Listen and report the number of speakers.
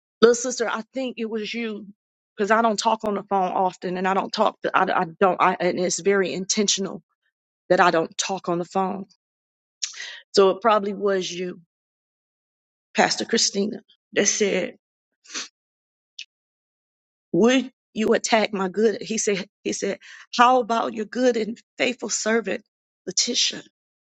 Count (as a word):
one